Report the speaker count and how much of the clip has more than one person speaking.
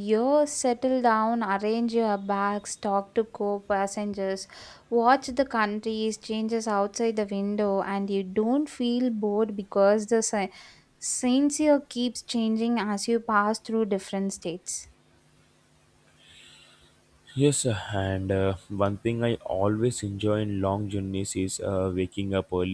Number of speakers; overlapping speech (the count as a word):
two, no overlap